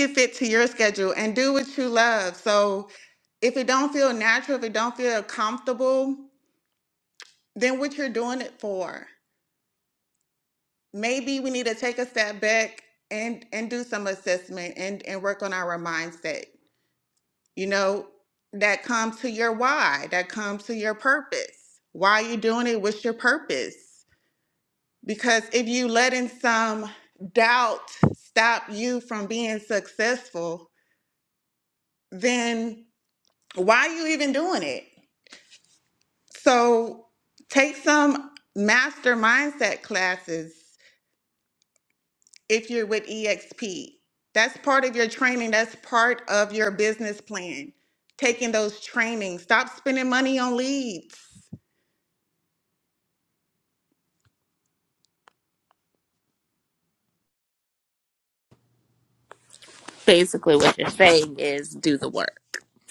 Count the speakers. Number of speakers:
2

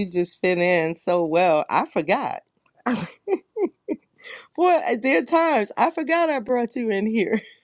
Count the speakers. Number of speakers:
1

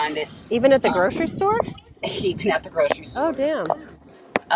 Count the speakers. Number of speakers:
2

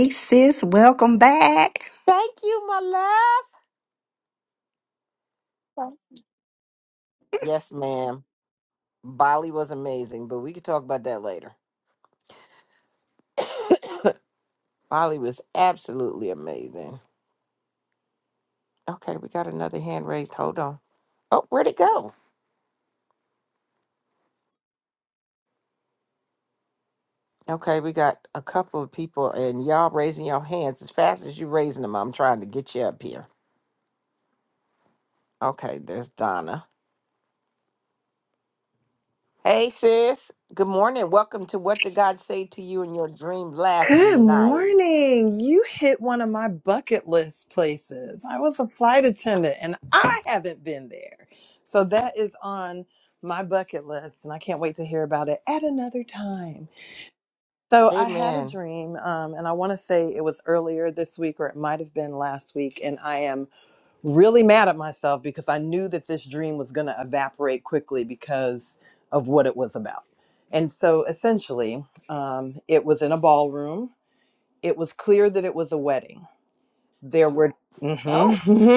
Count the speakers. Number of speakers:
3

